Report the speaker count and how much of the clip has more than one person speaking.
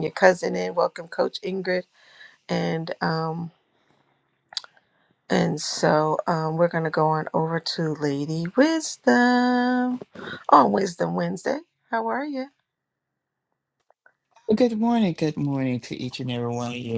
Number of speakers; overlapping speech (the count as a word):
two, no overlap